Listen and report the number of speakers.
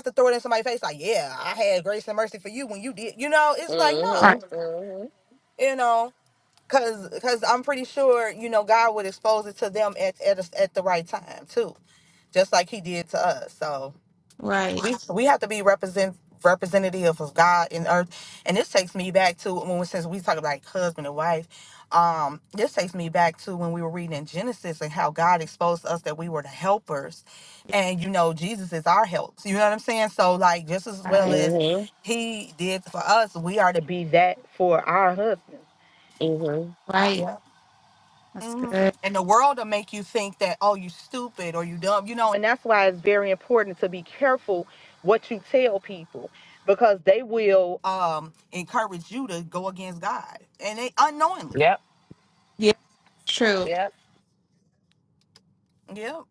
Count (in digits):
3